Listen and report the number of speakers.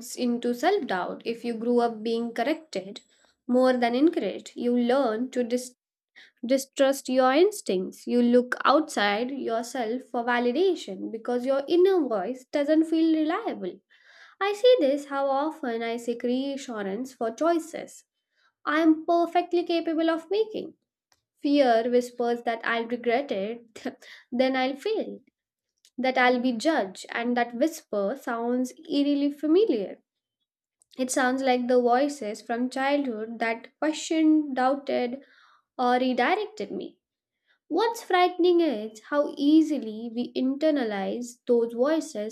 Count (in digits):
1